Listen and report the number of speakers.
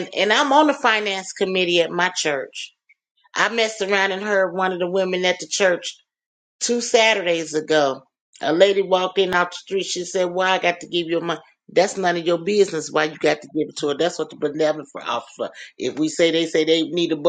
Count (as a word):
one